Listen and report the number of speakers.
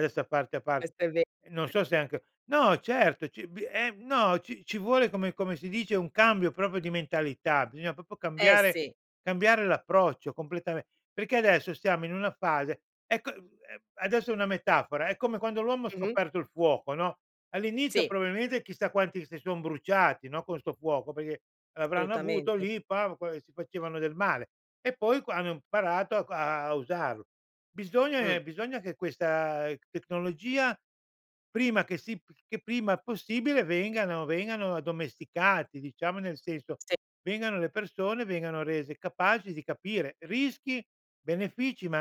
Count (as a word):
two